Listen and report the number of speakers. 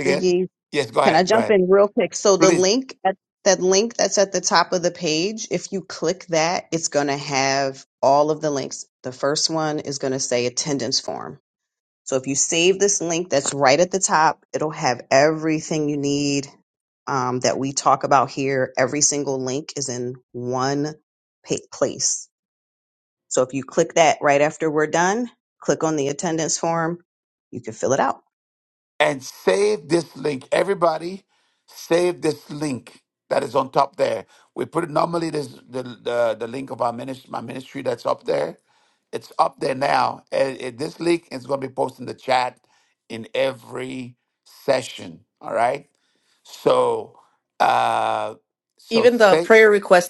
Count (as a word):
three